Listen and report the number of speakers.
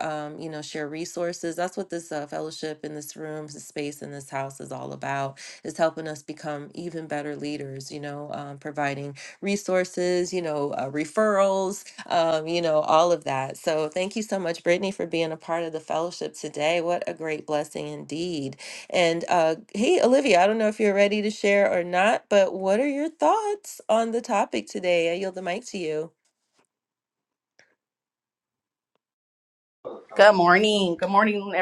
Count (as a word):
two